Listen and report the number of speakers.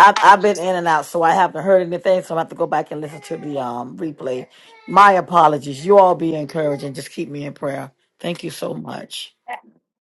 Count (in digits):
1